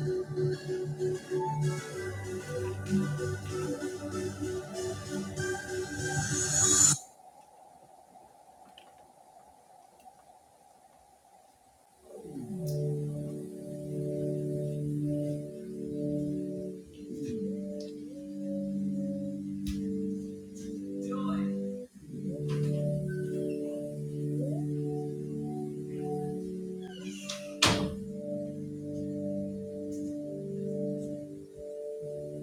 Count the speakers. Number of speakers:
0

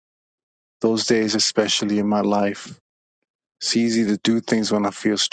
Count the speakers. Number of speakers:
1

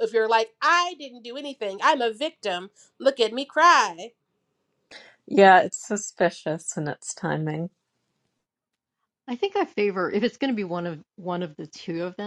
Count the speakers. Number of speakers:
3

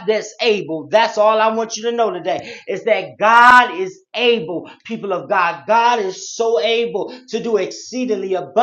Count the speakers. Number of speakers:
1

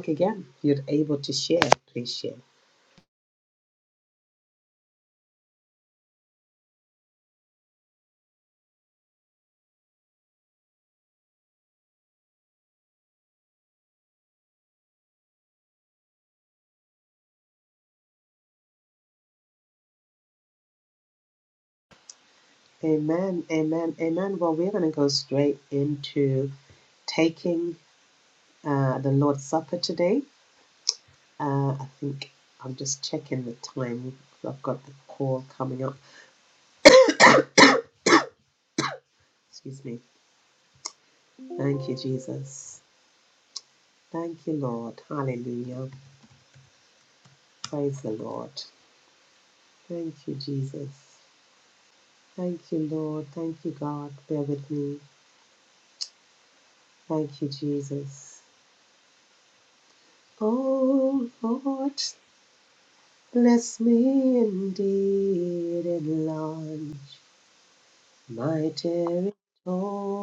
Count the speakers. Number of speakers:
1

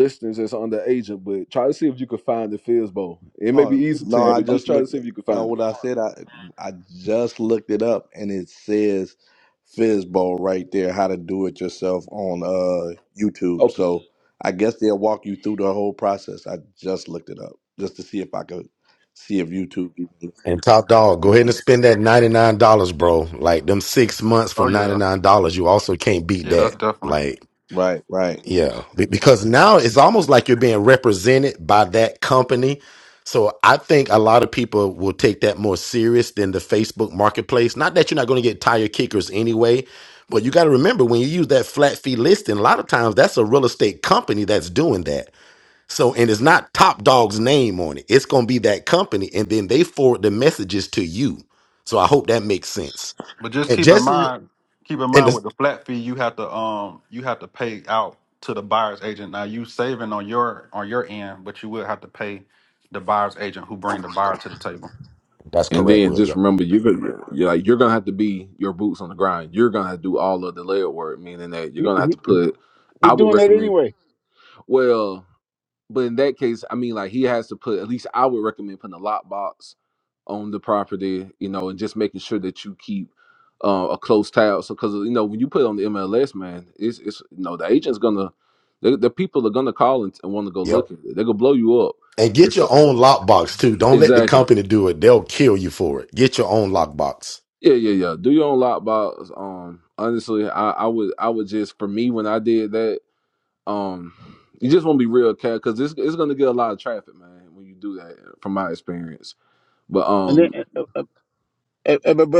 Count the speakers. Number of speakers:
5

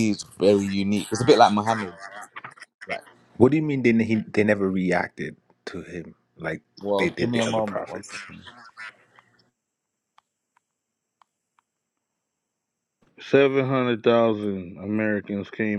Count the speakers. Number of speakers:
3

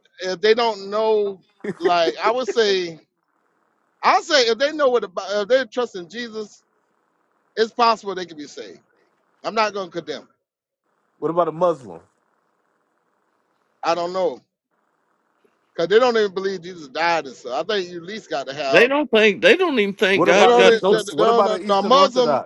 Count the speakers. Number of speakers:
3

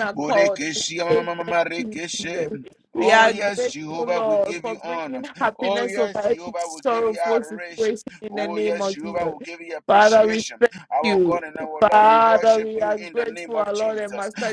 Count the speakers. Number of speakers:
2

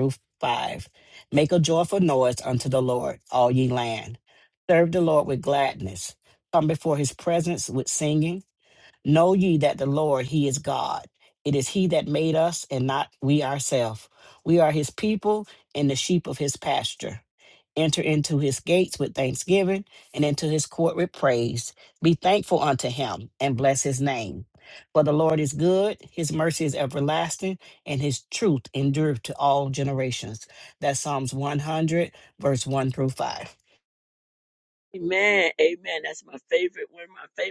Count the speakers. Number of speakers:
2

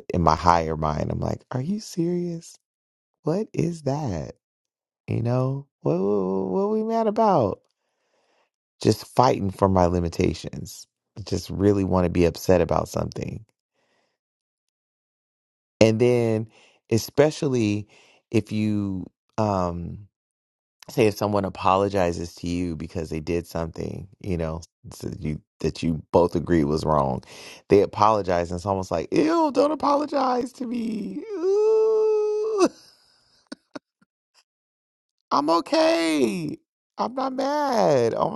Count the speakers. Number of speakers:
1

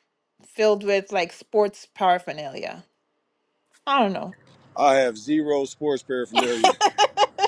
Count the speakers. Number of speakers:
2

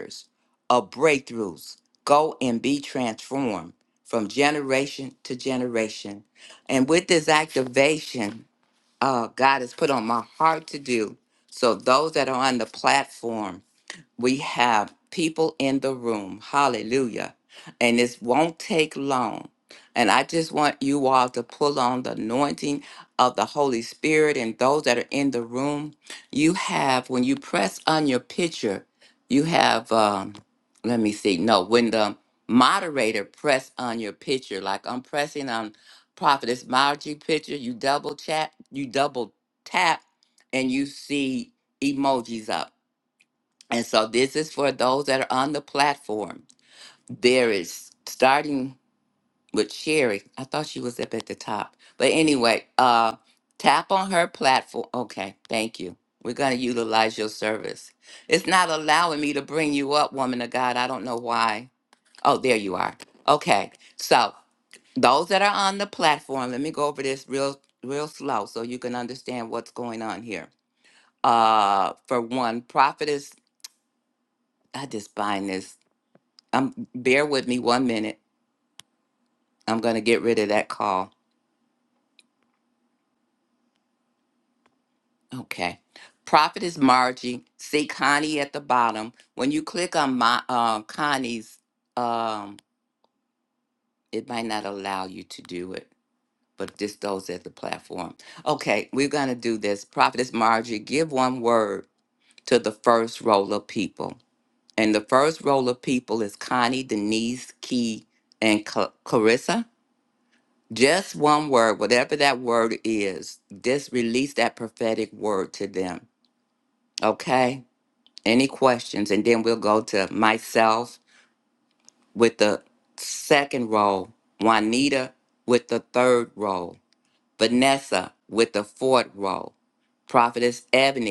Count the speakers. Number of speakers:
1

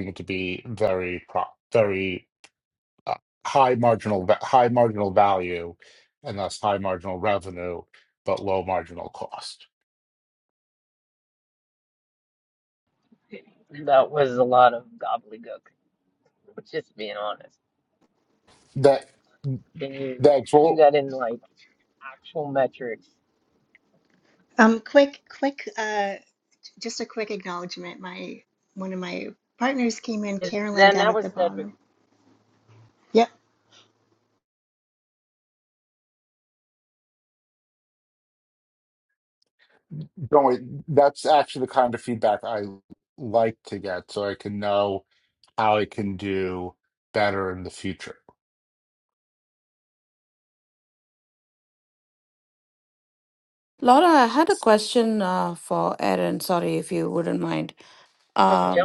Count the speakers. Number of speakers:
4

